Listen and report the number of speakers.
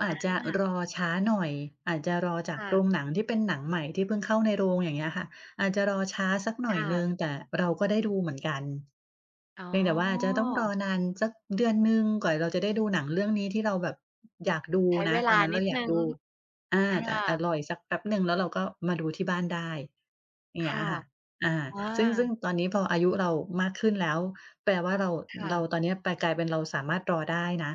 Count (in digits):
2